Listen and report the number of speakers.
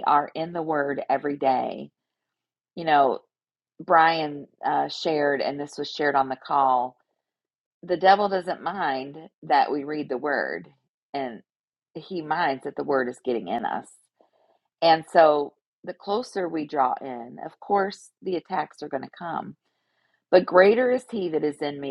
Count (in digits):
1